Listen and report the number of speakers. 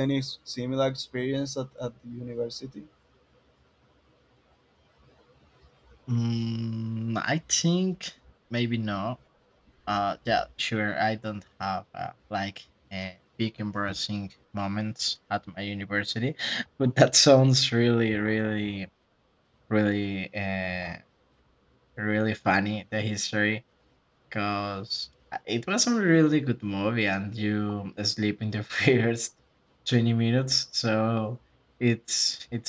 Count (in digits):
2